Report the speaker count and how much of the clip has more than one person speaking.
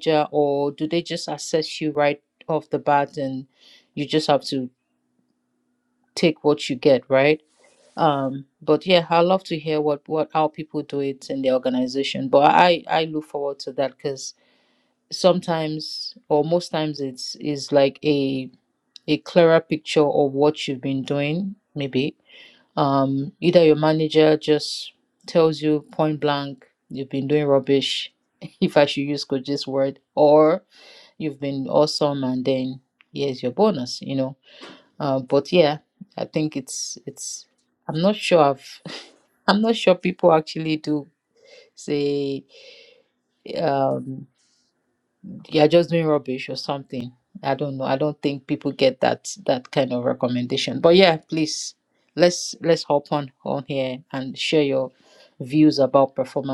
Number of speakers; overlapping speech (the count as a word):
one, no overlap